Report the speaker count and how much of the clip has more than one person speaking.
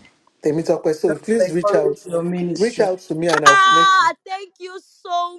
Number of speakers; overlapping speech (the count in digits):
3, about 34%